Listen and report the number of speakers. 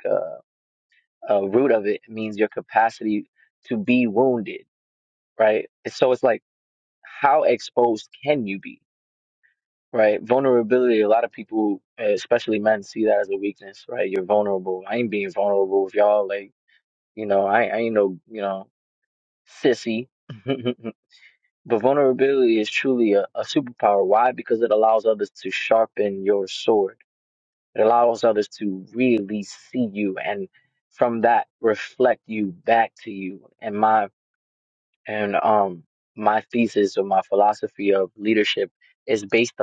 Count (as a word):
one